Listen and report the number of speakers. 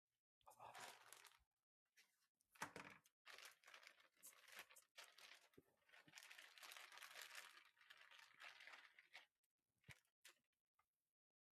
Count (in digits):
0